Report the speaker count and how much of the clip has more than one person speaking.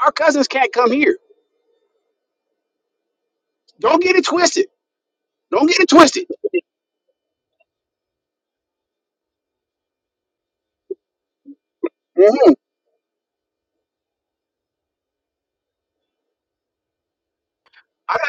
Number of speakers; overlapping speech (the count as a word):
one, no overlap